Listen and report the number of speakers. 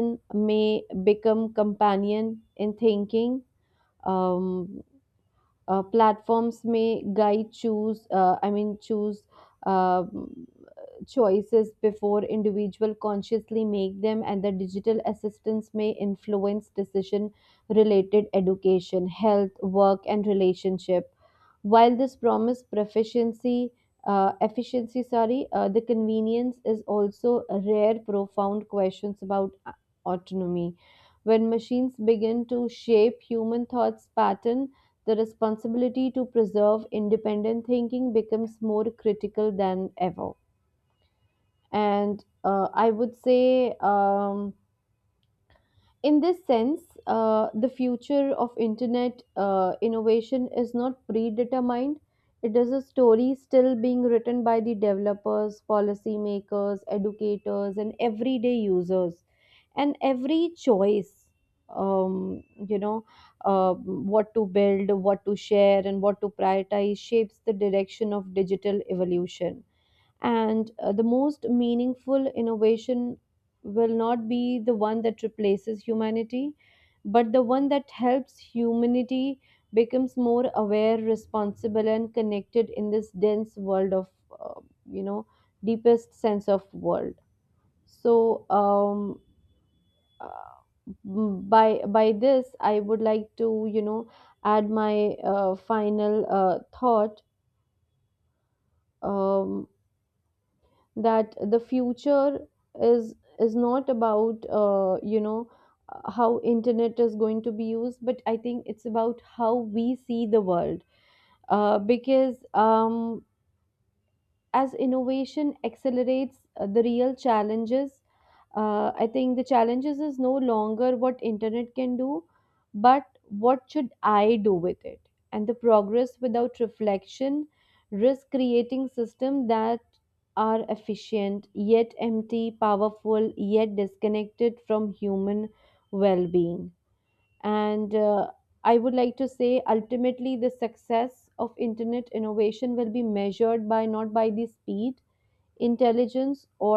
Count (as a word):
one